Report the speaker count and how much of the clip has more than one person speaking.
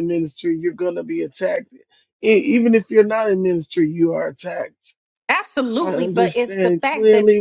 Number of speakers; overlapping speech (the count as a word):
two, about 22%